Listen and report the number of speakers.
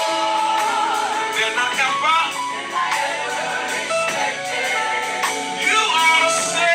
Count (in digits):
0